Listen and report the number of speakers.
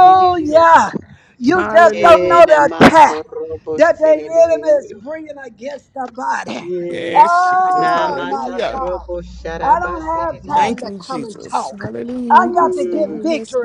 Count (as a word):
three